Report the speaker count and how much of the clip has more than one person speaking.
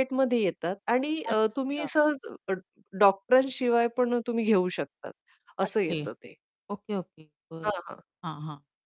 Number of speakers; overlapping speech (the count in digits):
2, about 9%